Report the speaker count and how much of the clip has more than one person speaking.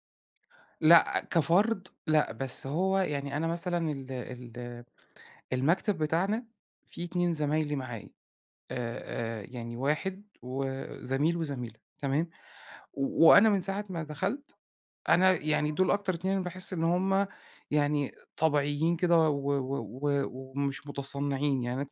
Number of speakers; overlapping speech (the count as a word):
one, no overlap